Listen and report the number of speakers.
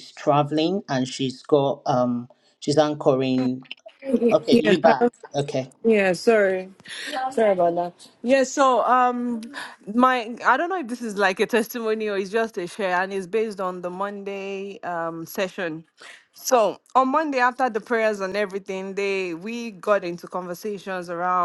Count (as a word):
two